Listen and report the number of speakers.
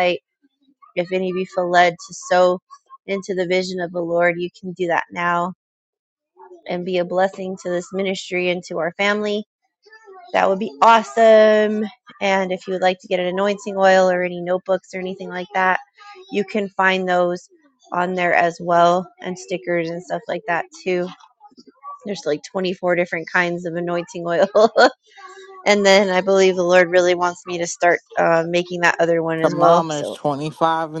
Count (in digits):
2